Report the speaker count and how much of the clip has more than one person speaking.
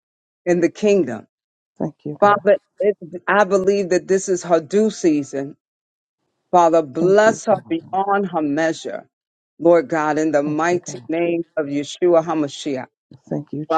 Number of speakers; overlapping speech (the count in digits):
2, about 11%